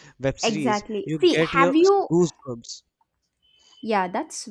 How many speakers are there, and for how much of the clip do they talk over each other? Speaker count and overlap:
2, about 29%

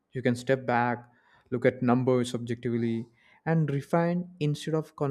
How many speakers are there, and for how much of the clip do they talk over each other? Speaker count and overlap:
1, no overlap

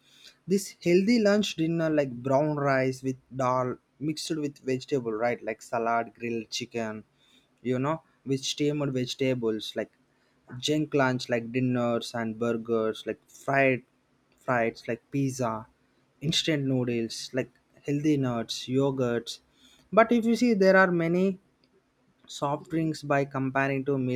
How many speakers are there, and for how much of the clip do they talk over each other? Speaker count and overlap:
1, no overlap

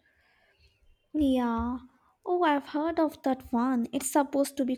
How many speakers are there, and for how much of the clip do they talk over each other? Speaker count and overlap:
1, no overlap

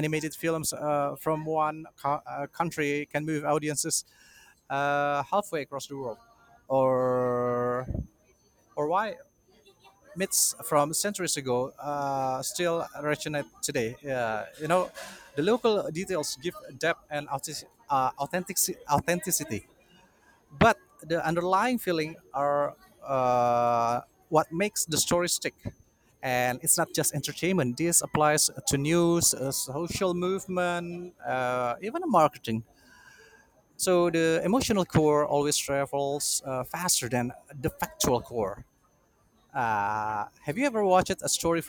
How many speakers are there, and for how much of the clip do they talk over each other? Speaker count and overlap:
1, no overlap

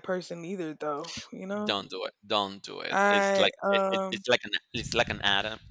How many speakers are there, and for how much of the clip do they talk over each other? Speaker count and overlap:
2, about 23%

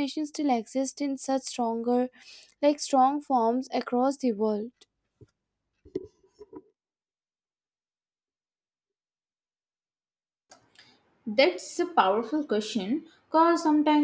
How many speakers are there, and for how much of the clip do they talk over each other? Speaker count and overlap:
2, no overlap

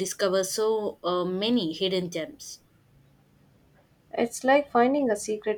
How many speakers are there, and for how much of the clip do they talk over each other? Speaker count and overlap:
2, no overlap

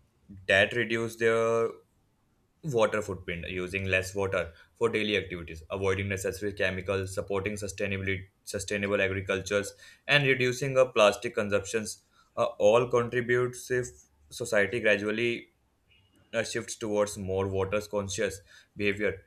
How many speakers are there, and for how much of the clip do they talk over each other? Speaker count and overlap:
1, no overlap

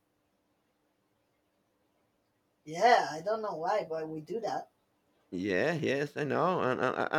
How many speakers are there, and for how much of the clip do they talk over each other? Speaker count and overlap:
2, no overlap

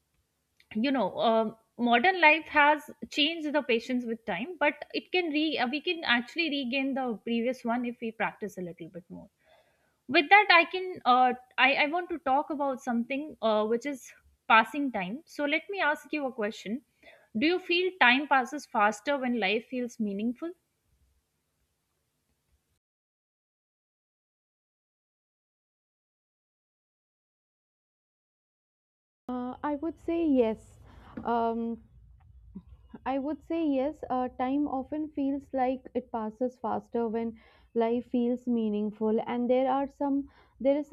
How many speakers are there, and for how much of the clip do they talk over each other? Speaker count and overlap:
2, no overlap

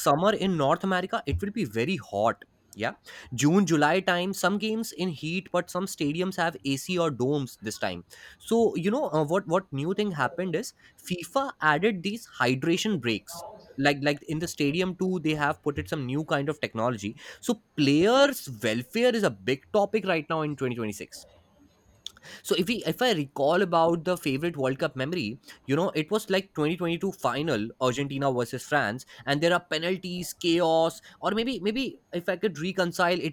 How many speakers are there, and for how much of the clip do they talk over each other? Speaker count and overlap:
1, no overlap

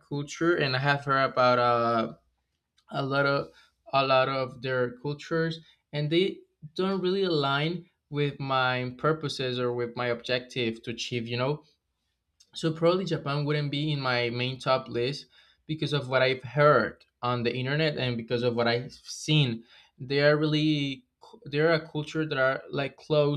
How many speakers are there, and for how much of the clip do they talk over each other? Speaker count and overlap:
1, no overlap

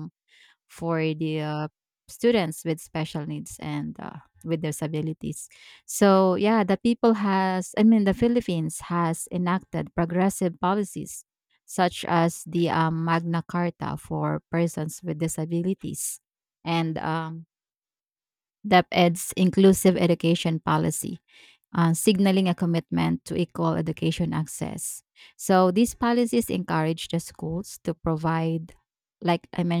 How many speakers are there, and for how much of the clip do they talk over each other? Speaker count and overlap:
1, no overlap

